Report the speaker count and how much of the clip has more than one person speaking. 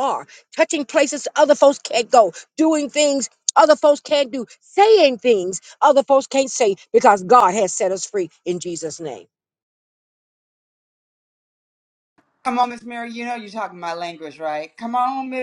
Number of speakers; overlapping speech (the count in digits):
2, no overlap